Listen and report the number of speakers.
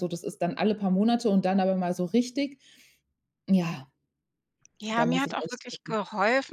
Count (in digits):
2